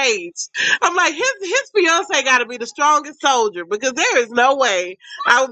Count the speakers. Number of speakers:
1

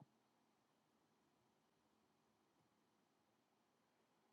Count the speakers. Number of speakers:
0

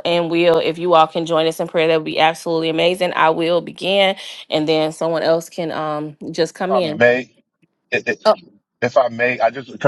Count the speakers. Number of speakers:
2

